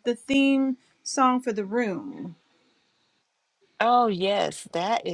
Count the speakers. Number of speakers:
two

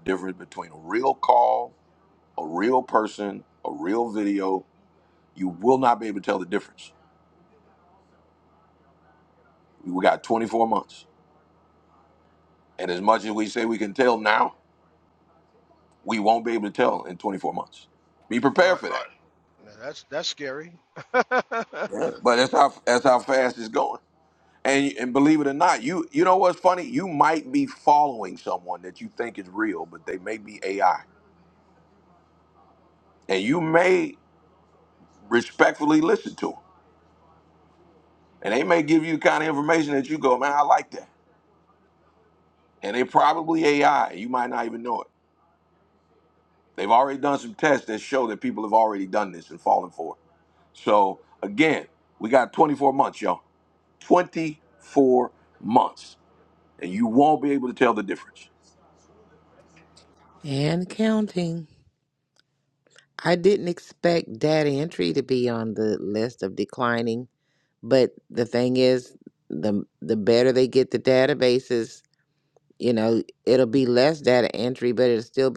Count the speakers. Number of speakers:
three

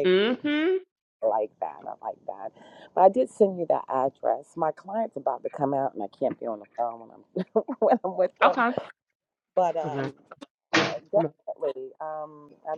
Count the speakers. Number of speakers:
two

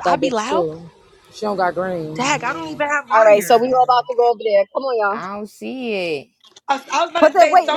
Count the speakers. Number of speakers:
four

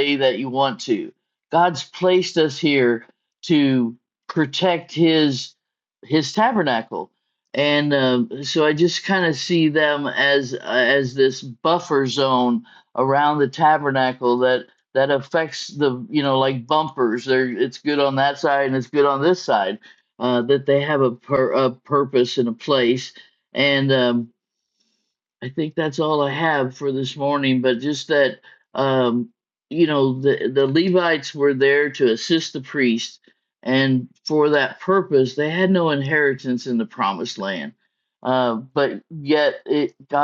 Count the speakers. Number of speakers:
one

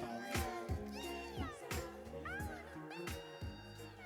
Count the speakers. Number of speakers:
zero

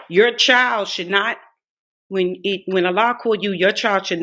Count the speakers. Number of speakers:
one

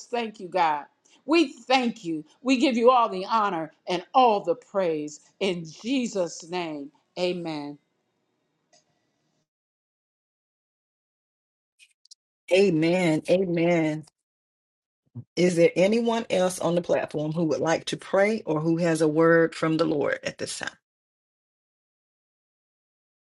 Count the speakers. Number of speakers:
two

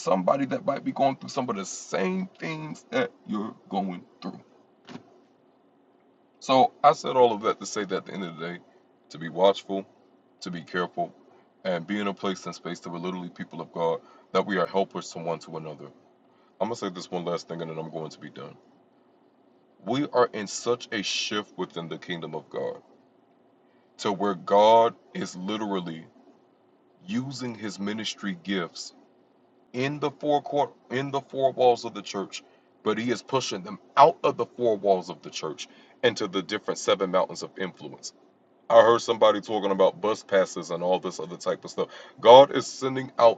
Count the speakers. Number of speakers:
one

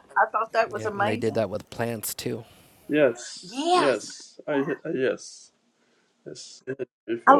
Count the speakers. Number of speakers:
three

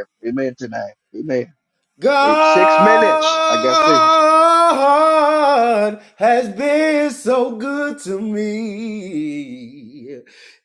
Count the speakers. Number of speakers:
two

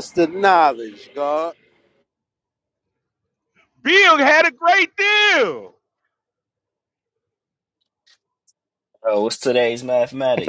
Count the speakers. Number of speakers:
three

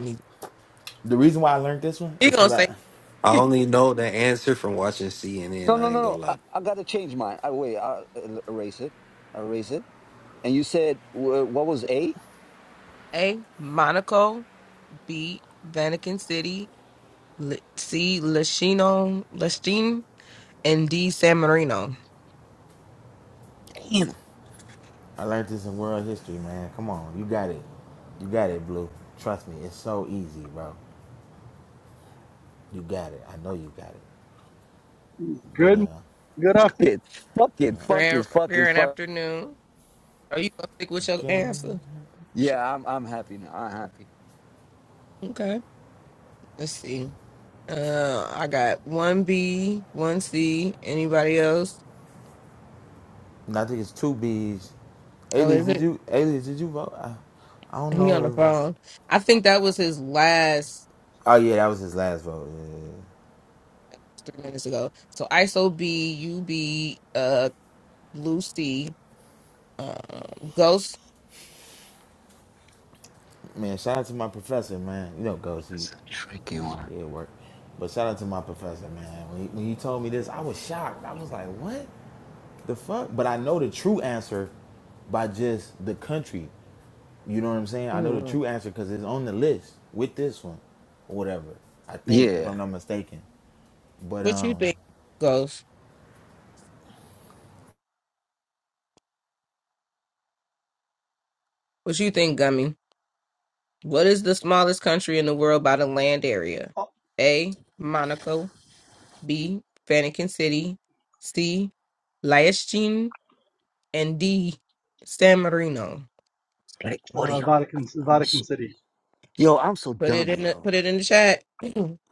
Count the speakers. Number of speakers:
five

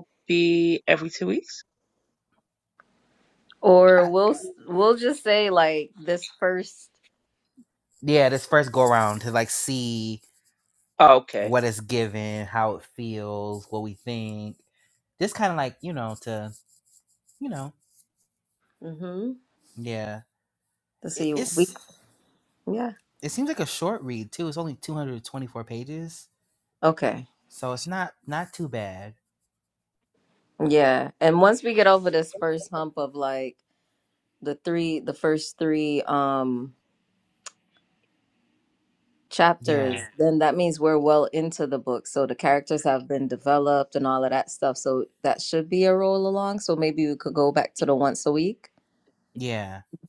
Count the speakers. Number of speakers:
three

